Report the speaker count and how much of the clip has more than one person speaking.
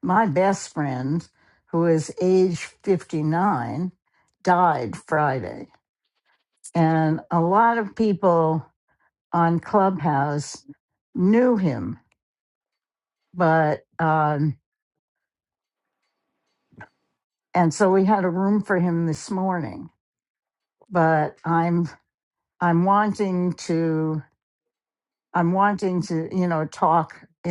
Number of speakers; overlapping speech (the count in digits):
1, no overlap